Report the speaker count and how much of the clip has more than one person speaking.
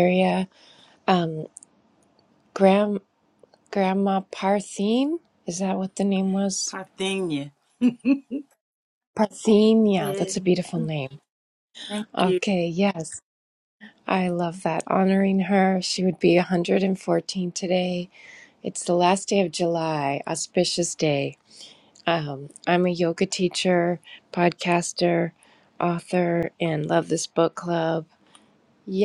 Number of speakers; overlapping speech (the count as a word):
two, about 2%